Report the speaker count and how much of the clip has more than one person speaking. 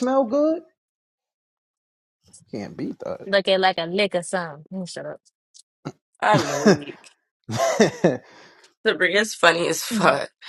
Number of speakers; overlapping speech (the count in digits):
3, about 7%